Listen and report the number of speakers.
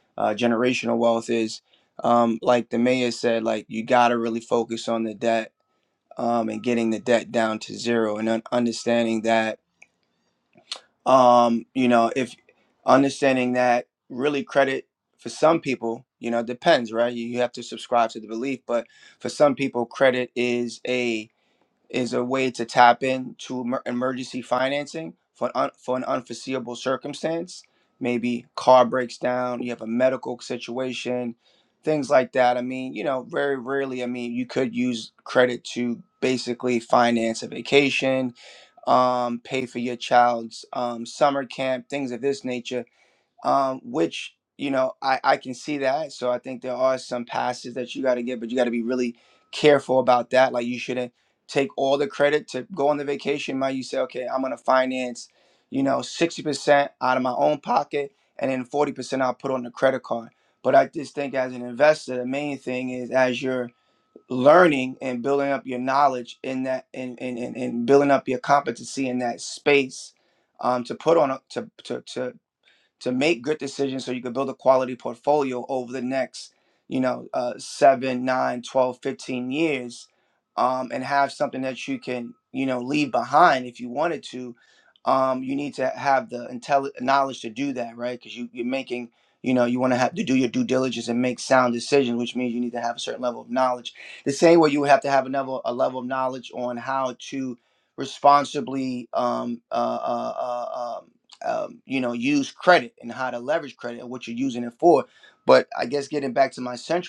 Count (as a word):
one